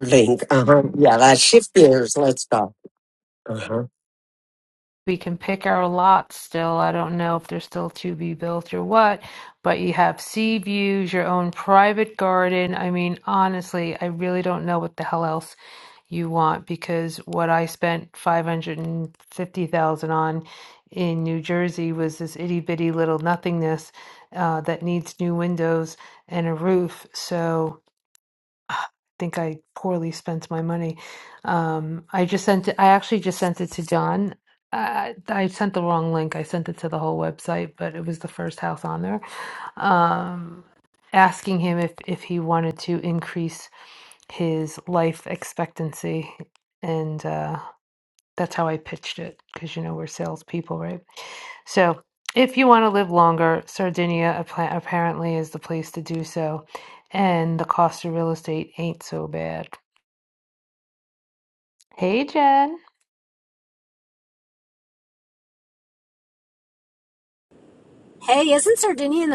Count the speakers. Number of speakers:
3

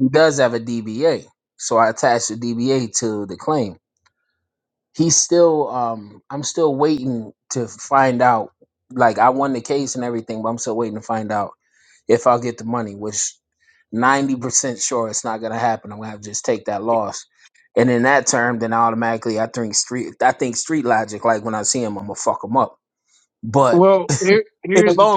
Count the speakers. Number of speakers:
2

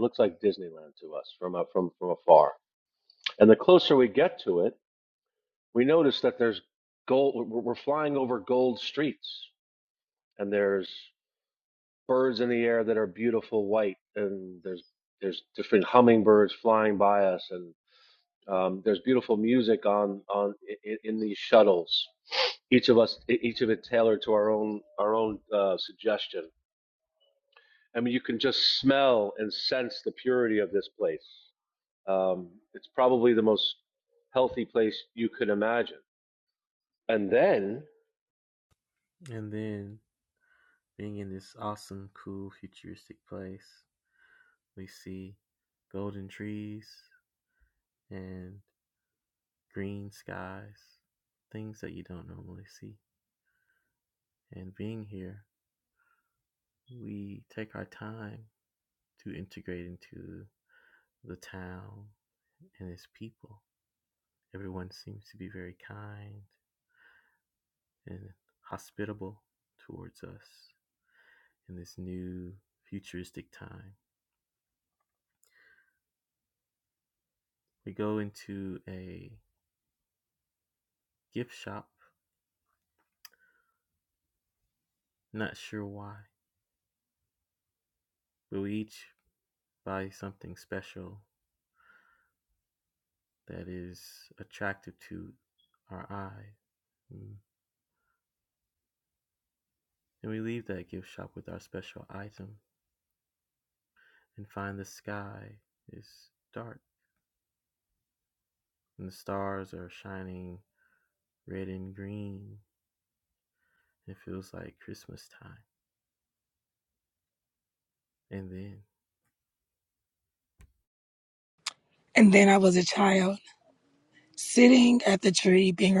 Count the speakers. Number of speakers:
3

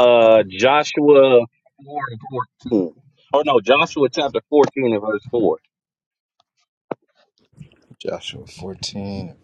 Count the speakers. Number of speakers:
2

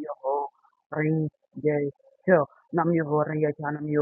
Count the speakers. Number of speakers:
1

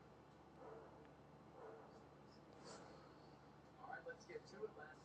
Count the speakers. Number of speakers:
0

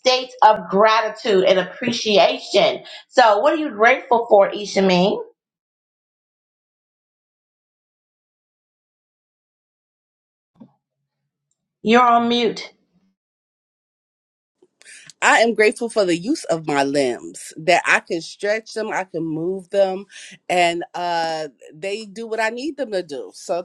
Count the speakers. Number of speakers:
2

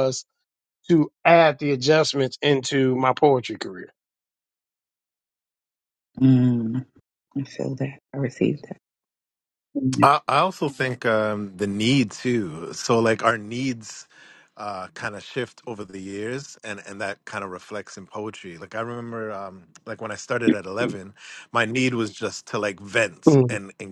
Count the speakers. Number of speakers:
3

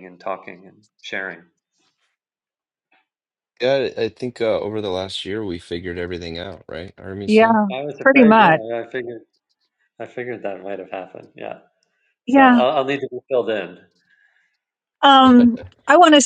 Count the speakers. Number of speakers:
3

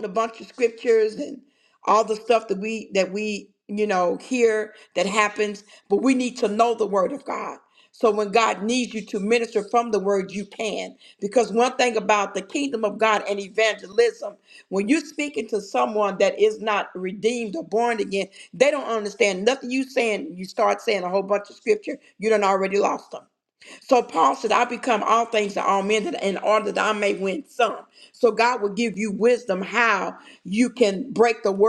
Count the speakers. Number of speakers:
1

